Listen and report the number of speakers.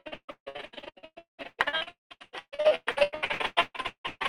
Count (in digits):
0